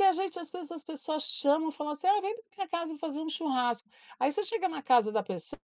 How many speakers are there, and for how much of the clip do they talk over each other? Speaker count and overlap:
1, no overlap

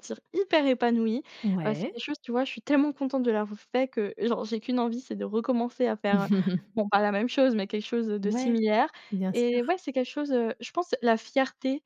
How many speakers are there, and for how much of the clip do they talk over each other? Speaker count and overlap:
2, about 8%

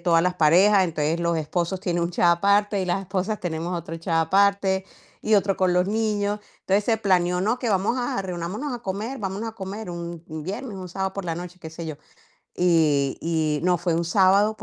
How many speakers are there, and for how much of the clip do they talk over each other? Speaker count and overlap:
1, no overlap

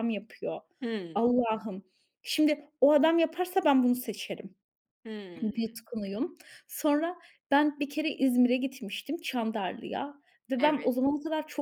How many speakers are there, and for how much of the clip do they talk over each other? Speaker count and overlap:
2, about 5%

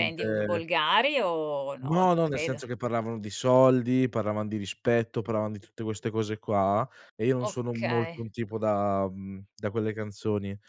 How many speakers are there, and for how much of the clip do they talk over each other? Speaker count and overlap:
2, about 20%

